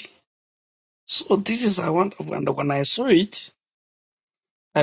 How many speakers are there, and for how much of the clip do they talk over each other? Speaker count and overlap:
1, no overlap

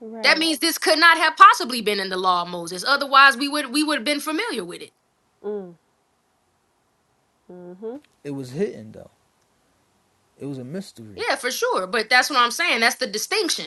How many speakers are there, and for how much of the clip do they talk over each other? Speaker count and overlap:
3, about 2%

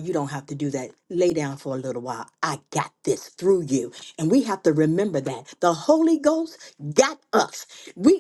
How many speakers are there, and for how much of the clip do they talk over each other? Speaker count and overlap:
1, no overlap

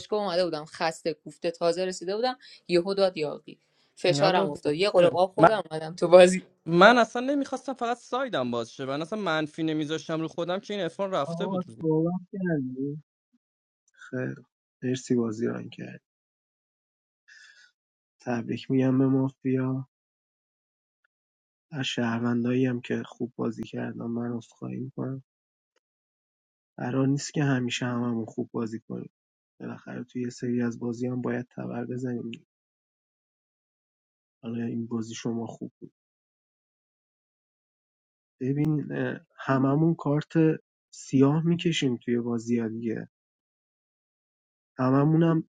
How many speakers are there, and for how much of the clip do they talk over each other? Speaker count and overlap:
3, about 3%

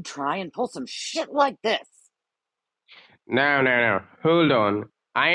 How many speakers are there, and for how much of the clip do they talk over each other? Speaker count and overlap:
2, no overlap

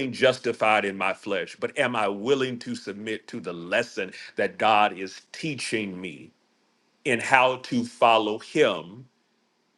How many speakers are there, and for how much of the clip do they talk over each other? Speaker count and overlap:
1, no overlap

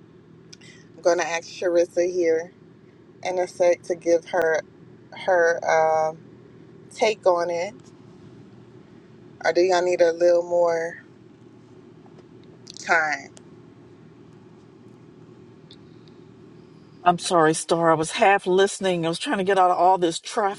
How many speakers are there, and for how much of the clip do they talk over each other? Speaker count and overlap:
2, no overlap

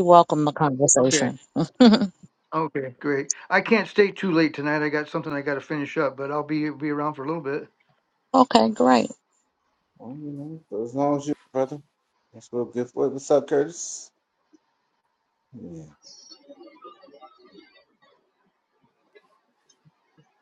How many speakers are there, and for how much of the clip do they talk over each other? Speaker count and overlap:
3, about 1%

